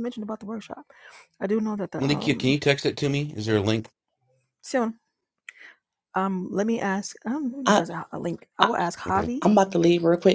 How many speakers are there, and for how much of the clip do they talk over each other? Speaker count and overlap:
three, about 11%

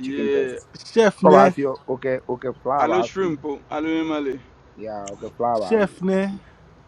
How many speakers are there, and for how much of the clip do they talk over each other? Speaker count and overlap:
three, about 21%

